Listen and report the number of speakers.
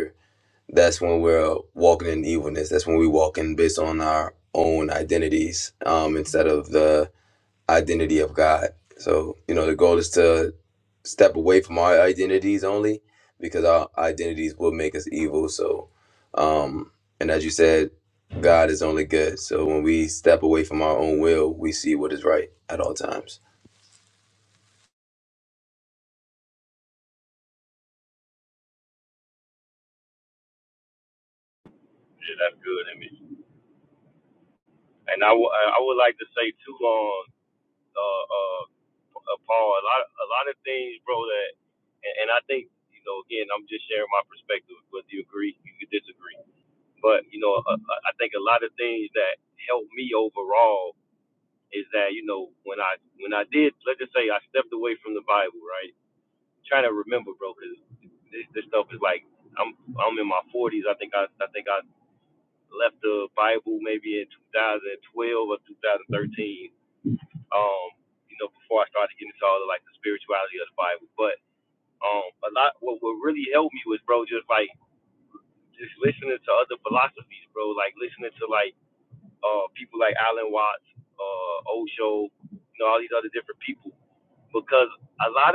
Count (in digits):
2